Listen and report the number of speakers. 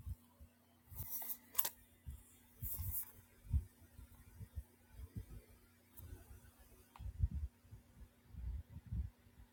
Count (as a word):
zero